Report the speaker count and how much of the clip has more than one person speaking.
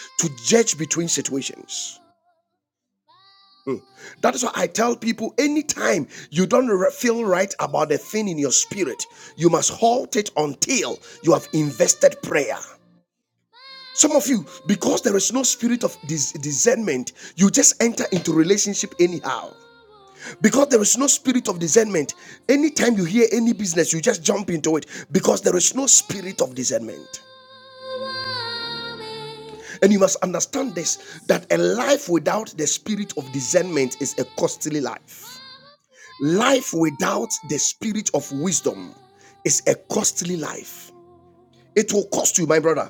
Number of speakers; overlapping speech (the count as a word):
one, no overlap